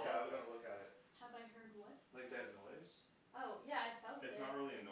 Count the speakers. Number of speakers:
three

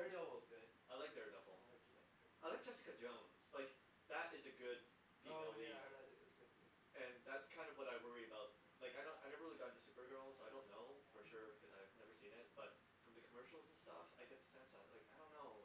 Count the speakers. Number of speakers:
two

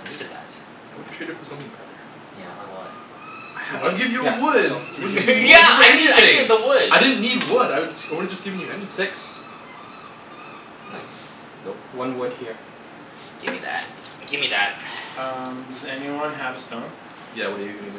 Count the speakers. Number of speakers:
four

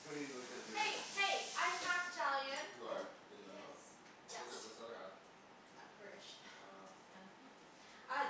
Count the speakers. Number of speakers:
two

